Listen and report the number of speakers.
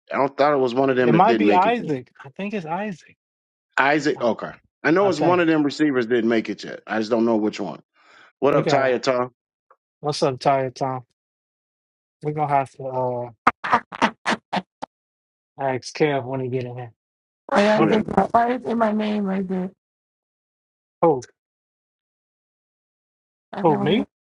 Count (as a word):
three